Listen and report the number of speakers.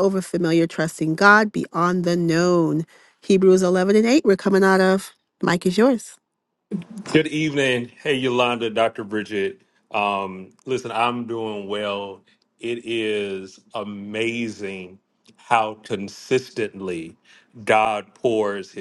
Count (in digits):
2